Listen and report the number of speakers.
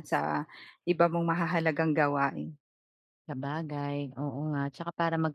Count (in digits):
2